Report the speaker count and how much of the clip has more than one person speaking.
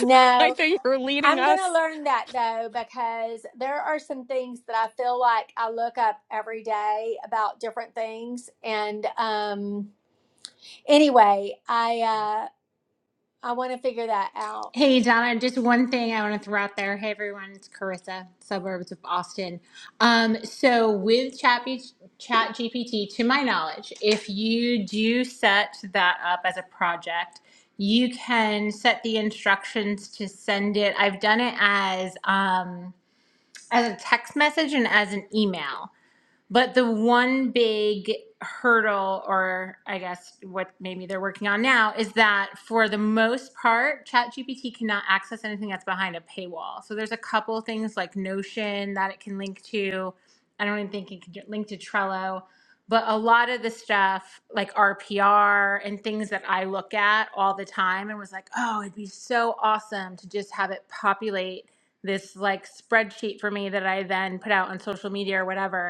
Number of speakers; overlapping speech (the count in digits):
3, about 1%